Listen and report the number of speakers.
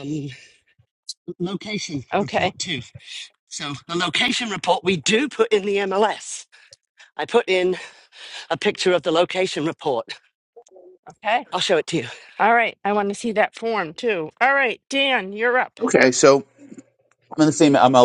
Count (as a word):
three